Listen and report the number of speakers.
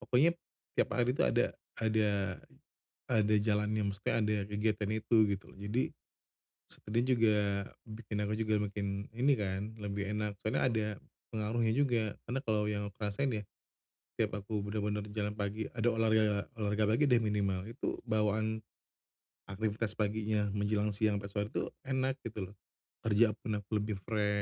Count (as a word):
one